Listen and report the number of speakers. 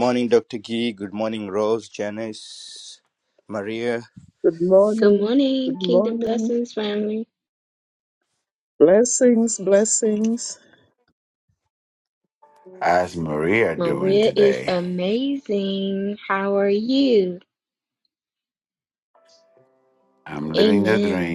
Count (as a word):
four